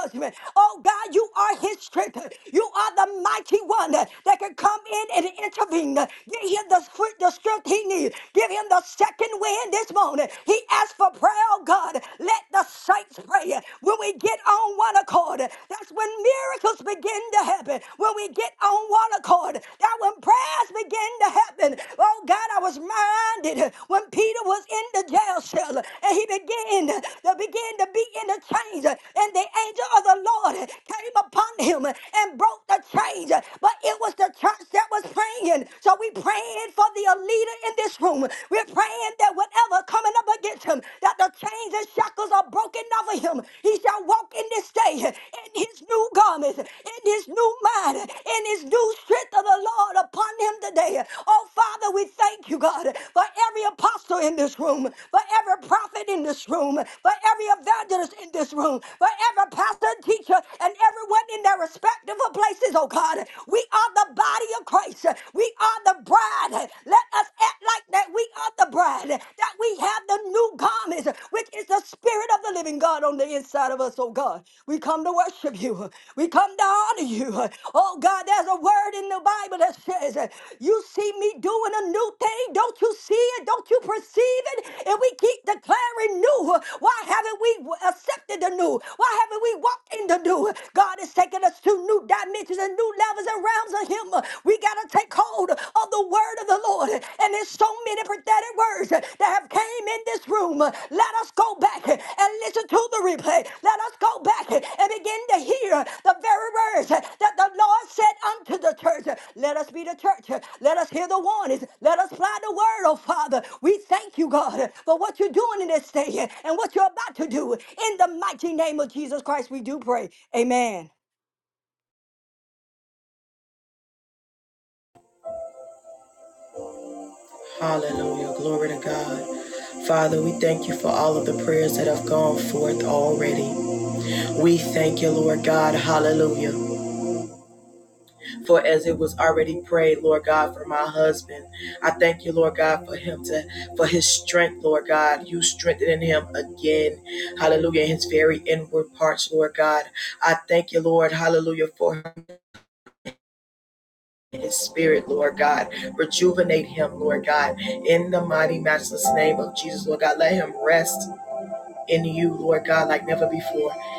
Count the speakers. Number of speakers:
2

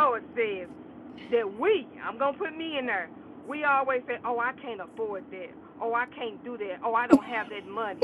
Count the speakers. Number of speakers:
1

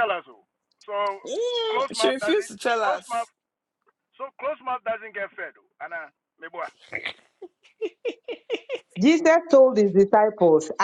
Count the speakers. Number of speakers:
3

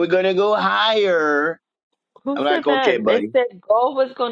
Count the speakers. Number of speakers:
2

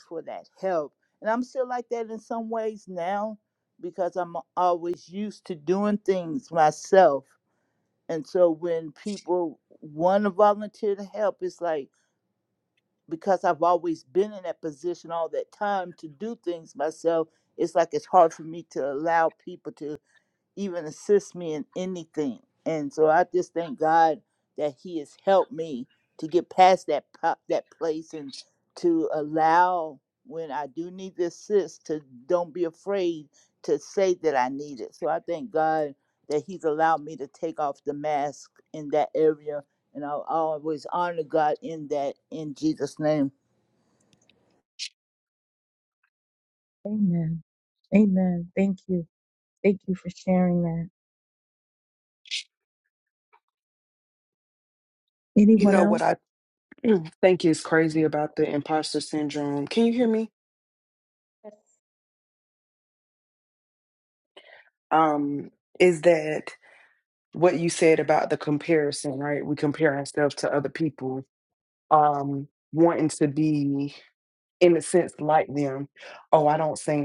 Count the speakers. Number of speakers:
3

